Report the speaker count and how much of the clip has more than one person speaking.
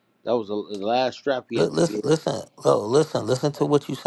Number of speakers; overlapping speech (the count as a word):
two, about 14%